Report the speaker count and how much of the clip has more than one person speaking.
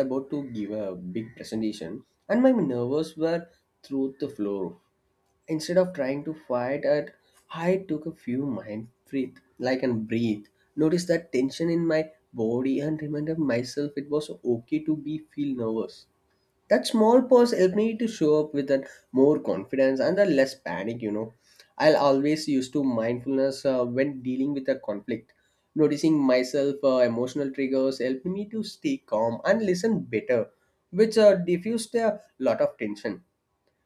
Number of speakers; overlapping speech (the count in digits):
1, no overlap